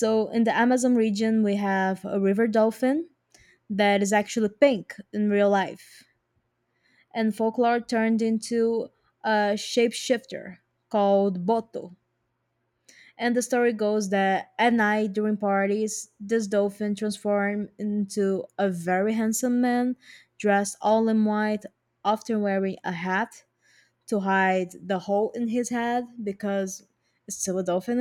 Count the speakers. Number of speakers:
one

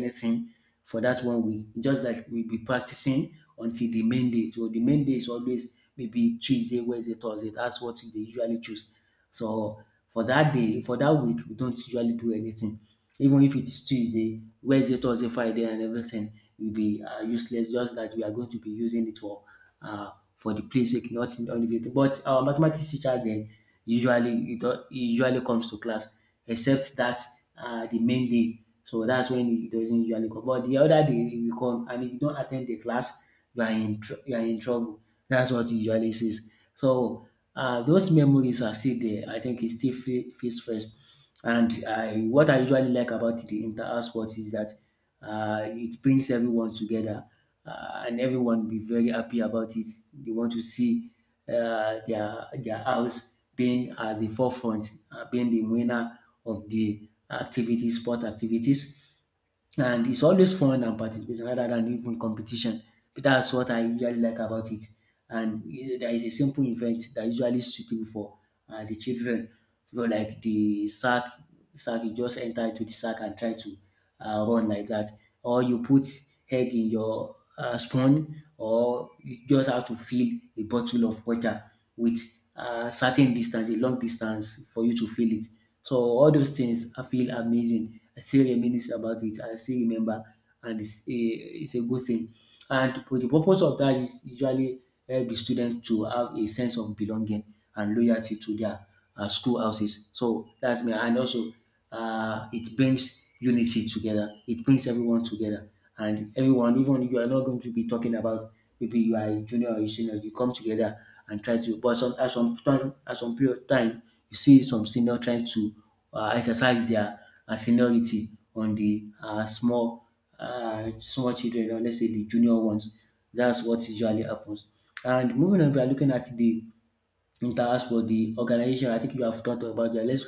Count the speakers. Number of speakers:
one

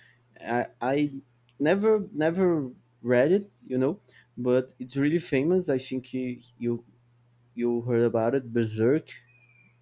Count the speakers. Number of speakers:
one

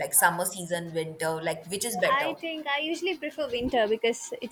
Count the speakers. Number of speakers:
two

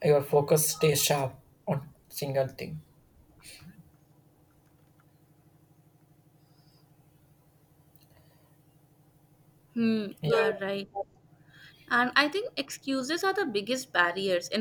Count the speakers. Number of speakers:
two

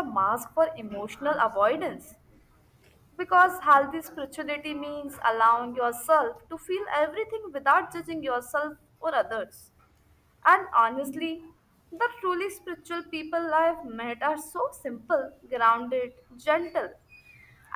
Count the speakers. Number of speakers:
one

